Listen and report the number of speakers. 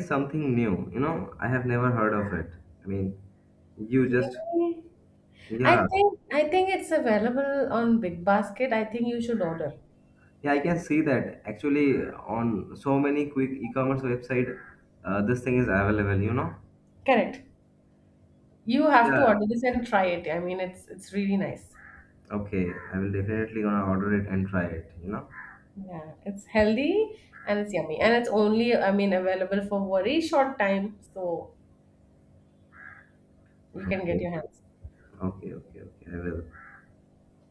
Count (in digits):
2